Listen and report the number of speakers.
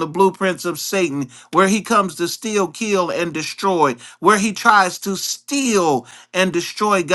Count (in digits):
1